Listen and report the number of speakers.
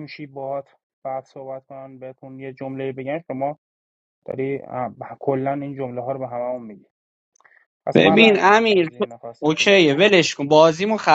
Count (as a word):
two